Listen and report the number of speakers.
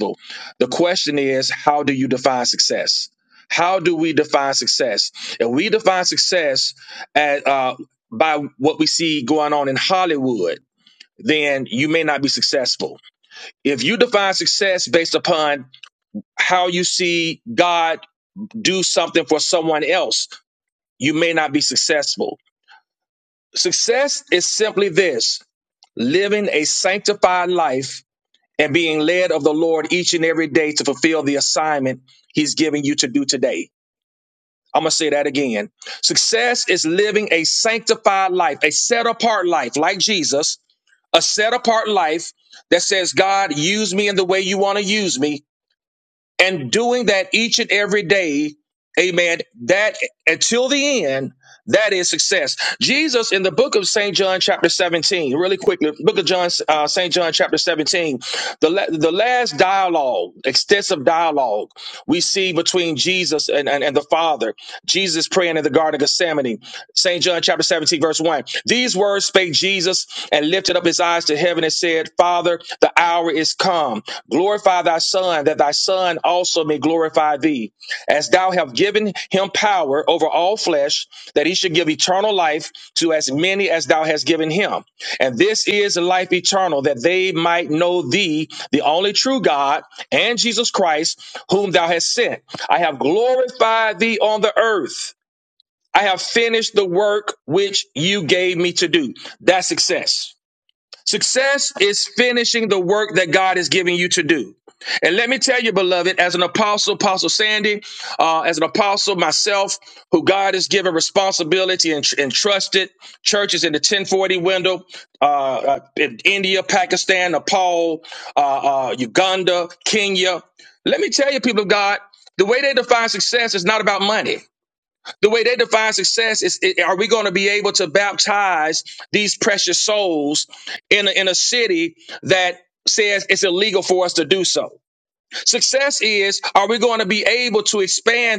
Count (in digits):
1